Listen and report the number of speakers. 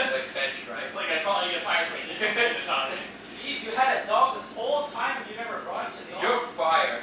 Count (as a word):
three